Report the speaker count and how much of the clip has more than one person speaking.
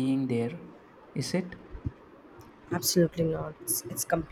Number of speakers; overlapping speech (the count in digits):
2, no overlap